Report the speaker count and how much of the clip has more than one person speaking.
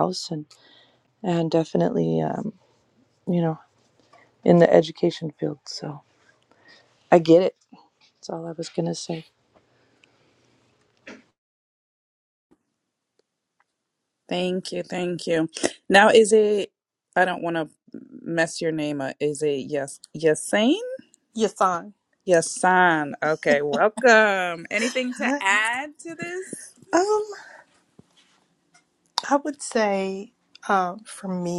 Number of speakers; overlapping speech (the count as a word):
three, about 1%